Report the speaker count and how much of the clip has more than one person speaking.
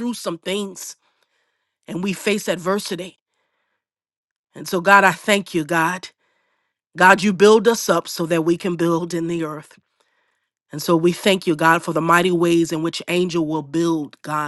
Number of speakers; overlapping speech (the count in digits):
1, no overlap